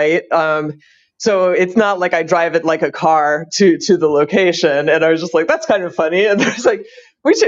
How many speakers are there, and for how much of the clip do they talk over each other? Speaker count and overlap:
1, no overlap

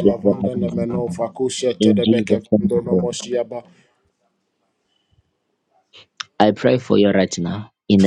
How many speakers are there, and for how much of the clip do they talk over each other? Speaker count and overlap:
2, about 30%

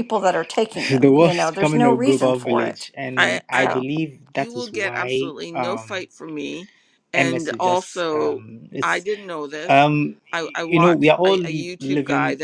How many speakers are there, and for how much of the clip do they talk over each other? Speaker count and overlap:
3, about 63%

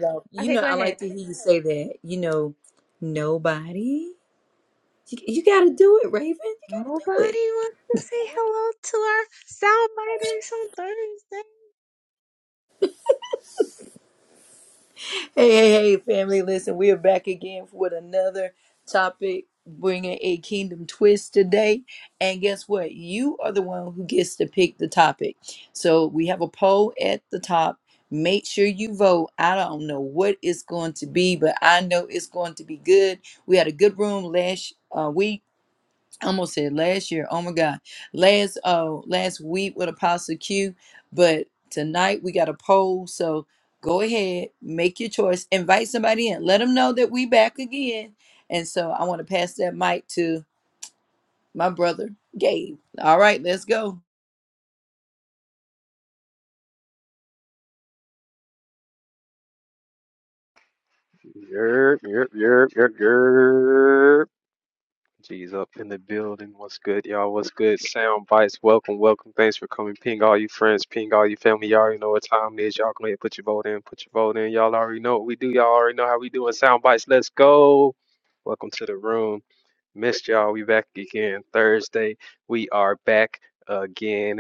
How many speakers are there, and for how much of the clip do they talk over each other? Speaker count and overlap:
3, about 1%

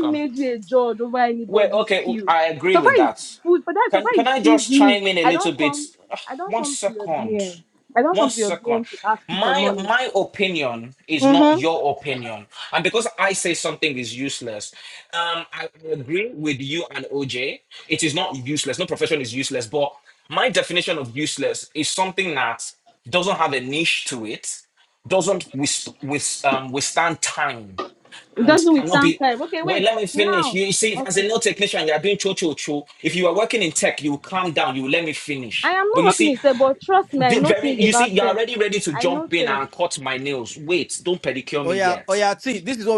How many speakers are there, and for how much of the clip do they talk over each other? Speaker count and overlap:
3, about 26%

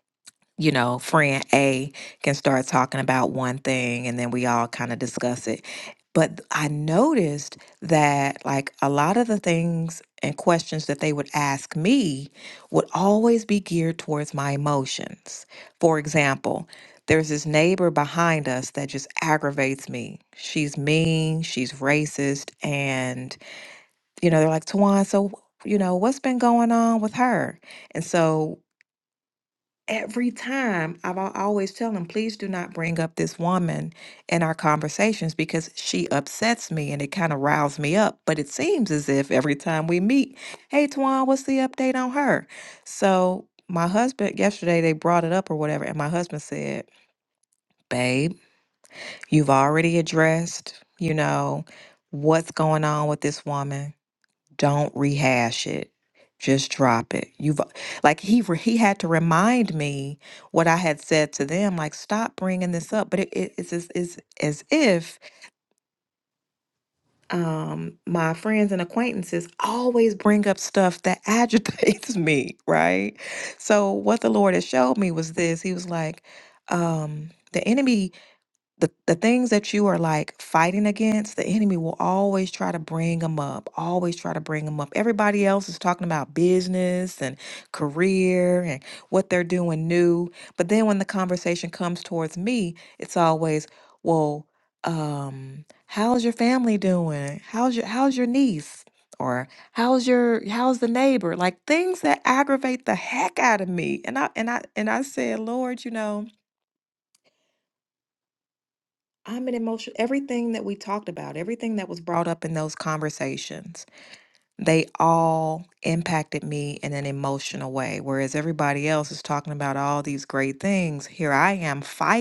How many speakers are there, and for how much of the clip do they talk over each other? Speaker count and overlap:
1, no overlap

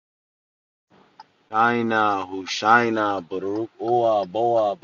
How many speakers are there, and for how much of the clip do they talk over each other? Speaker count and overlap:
1, no overlap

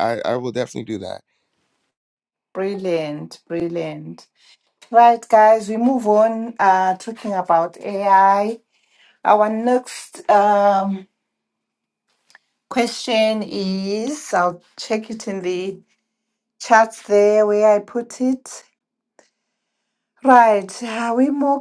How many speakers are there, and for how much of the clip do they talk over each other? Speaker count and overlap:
2, no overlap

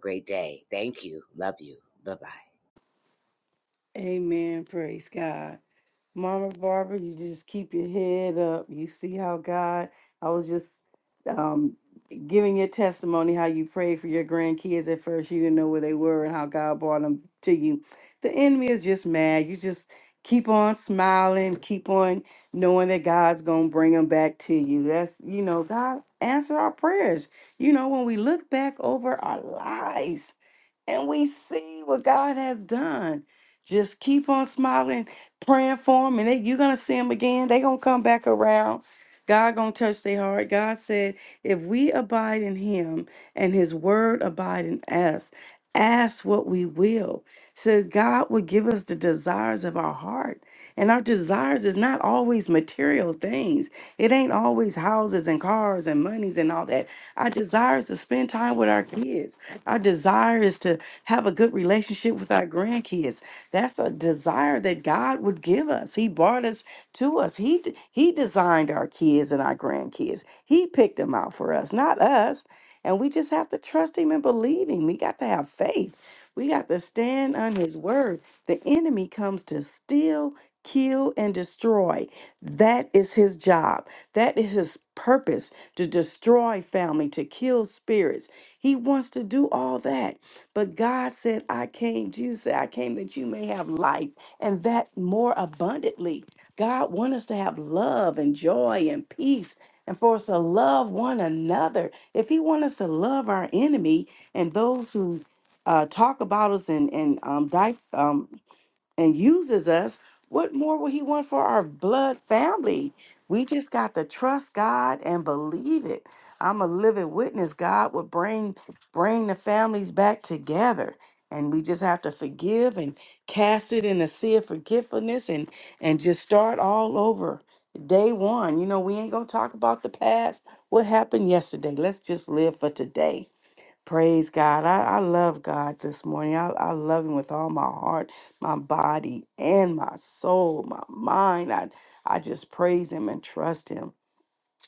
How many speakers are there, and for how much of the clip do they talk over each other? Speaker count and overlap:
2, no overlap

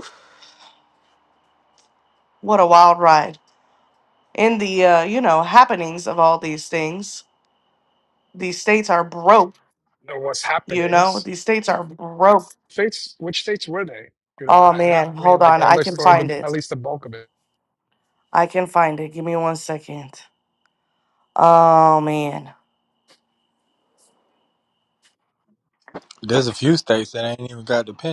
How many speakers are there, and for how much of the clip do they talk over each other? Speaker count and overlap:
3, about 9%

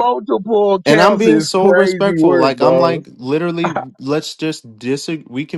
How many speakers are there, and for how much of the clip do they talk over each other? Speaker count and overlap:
2, about 39%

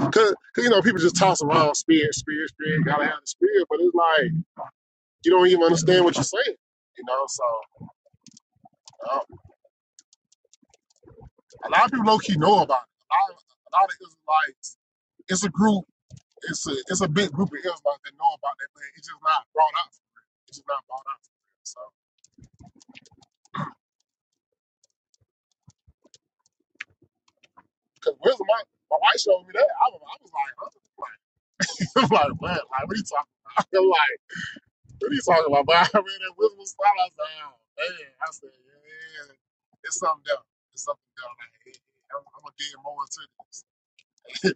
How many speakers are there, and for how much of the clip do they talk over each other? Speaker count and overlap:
1, no overlap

